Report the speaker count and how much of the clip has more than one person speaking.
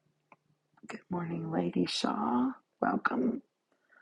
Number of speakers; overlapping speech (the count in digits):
1, no overlap